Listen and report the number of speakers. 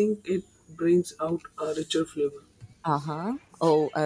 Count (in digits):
2